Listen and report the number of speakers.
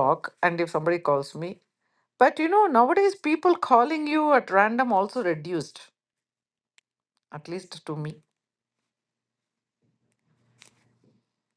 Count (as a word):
one